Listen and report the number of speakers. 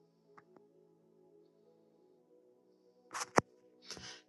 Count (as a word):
zero